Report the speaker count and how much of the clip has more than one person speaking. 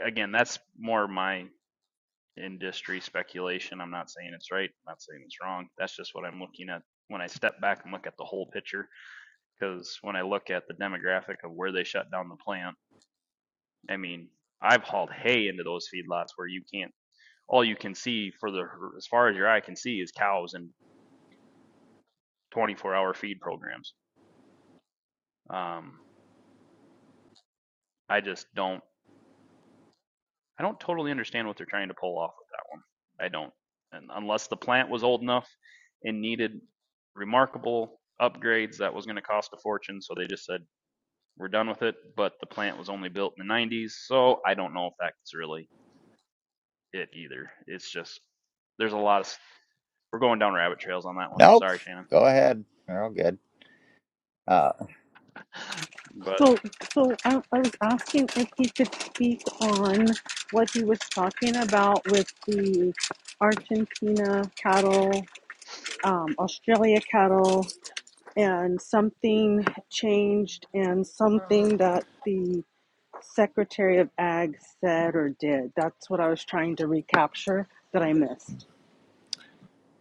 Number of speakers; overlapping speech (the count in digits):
3, under 1%